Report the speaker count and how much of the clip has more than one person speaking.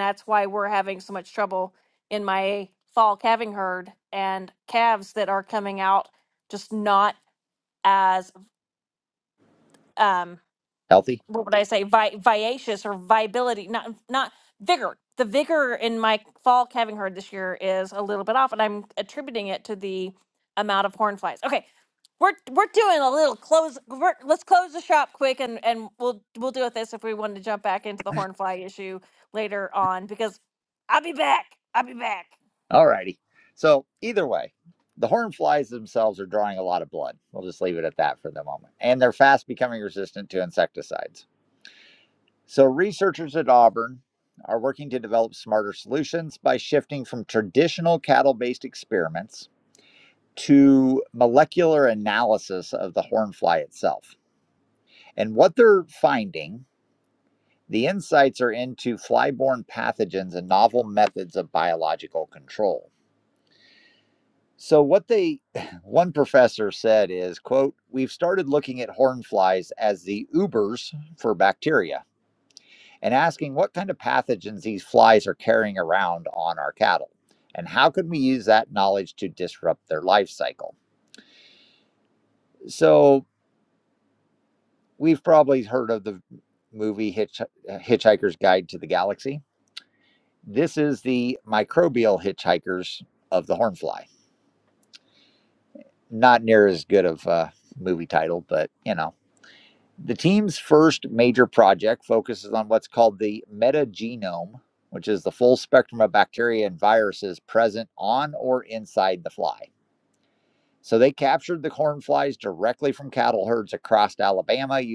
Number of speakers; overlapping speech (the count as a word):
two, no overlap